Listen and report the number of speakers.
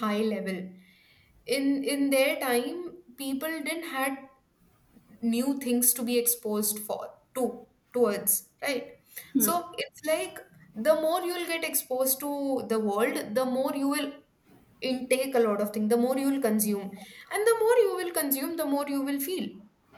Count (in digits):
1